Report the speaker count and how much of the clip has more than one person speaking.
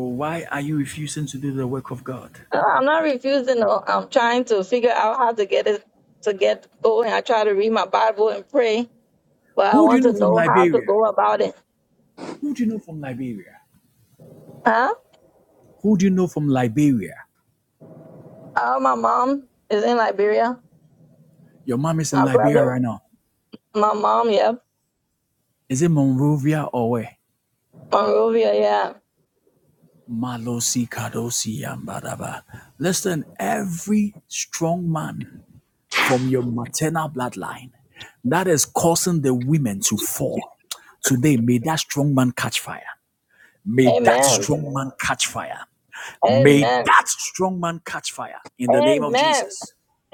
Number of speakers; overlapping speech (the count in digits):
2, about 8%